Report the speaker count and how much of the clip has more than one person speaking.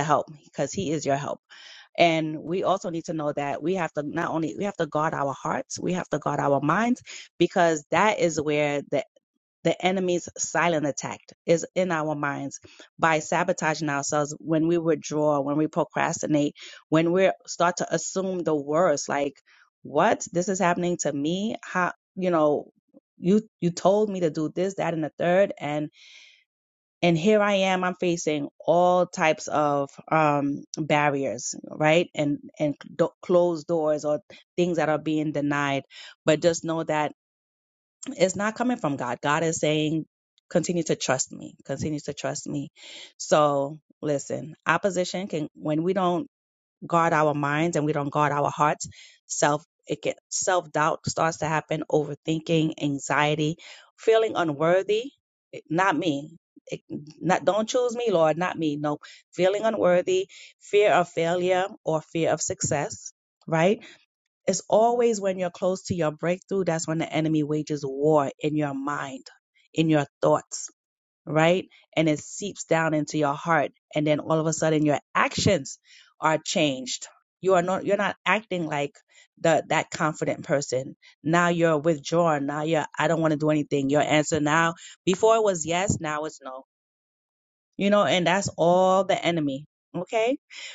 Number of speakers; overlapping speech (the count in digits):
1, no overlap